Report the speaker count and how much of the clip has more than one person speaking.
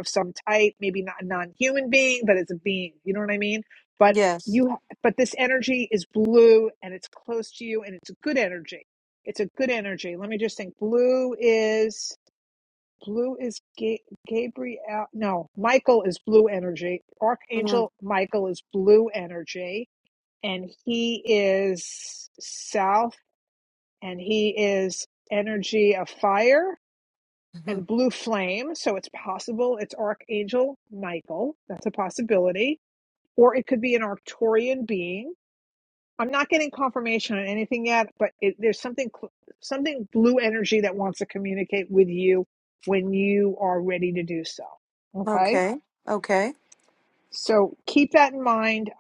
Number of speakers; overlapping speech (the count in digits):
2, about 2%